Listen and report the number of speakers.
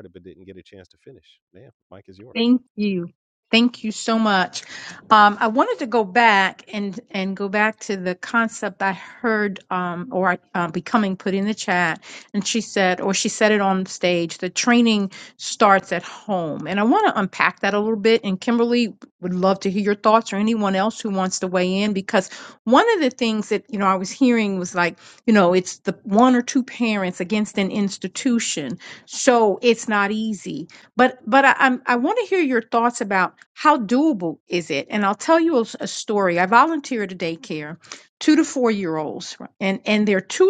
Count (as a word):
two